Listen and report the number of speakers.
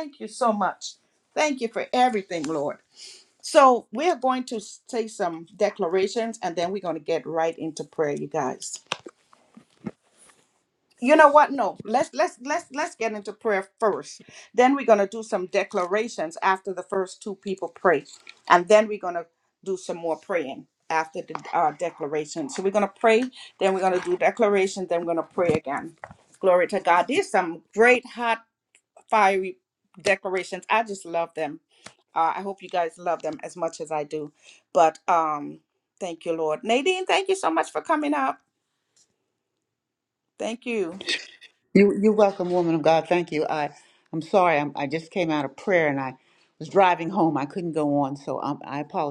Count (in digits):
2